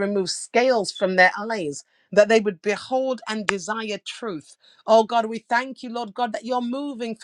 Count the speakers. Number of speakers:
1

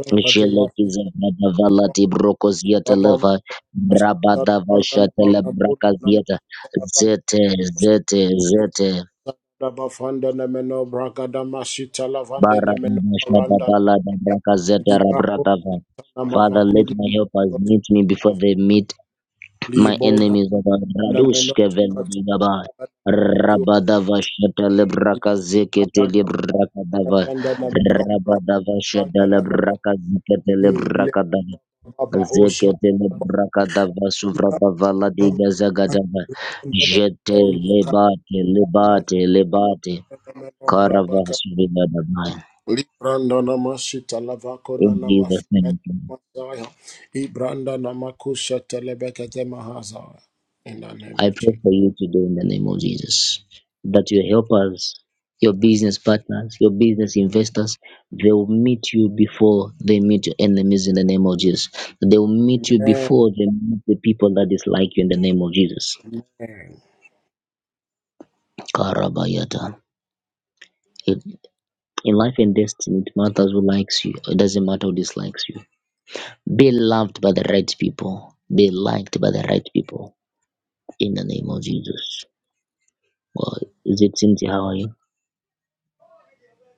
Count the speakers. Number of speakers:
2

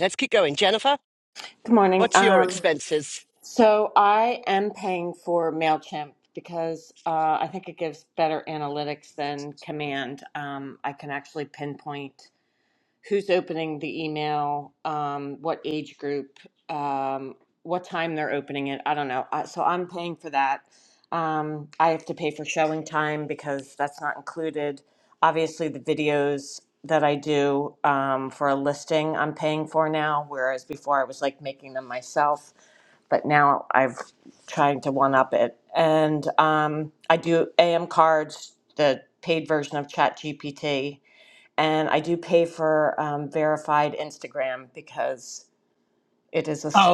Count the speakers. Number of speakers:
2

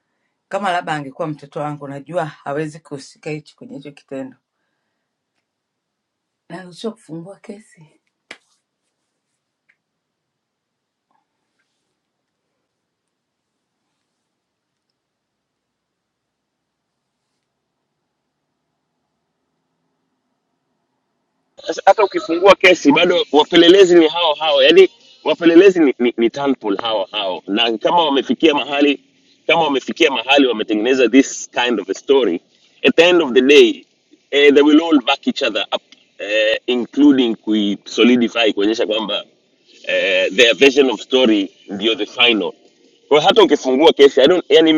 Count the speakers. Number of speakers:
2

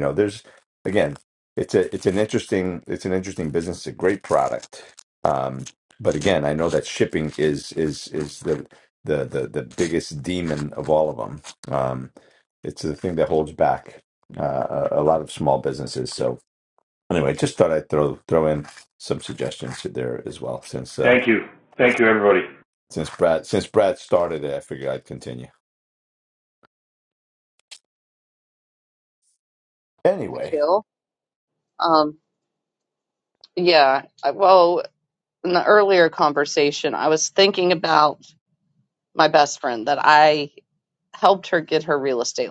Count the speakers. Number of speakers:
3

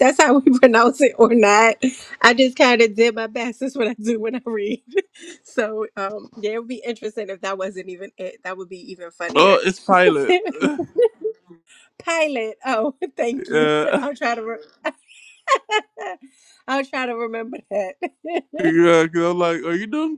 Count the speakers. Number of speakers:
2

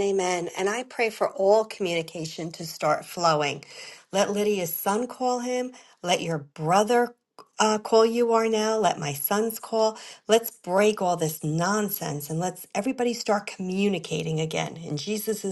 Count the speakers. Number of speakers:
1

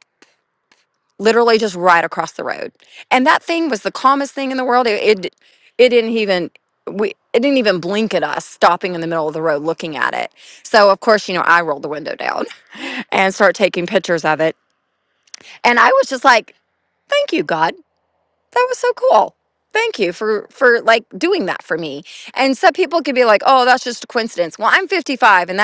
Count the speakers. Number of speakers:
1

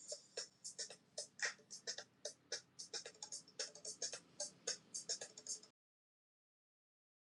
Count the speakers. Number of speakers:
0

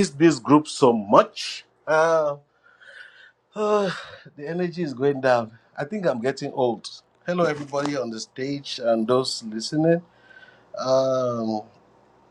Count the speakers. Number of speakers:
1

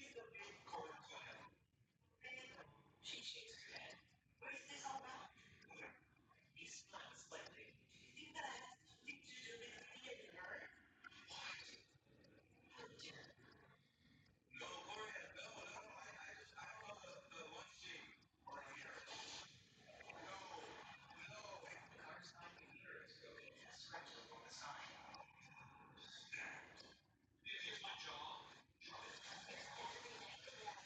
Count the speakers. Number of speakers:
0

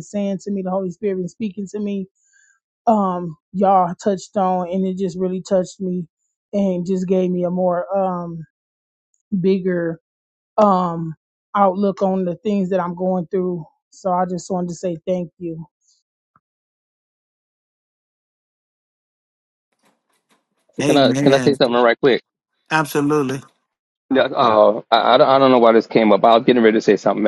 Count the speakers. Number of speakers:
3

